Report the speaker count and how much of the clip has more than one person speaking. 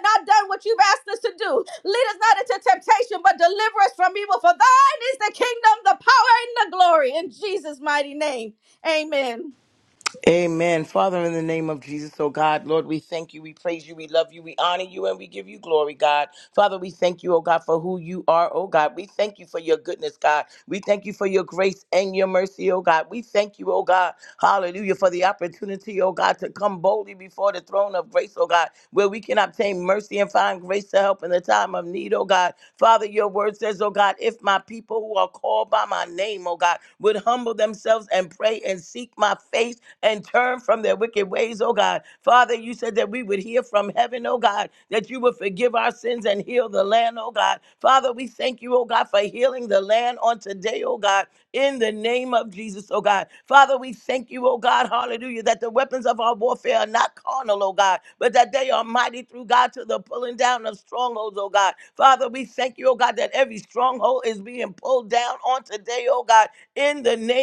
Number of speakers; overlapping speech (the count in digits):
2, no overlap